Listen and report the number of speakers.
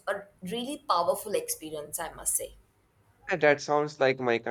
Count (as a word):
two